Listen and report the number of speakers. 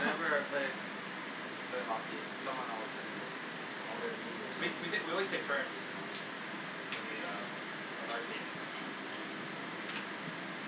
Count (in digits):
2